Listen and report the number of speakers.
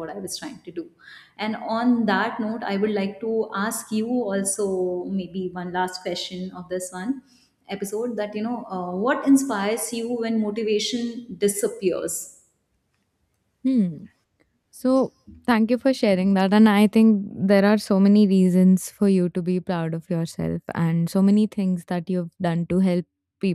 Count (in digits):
2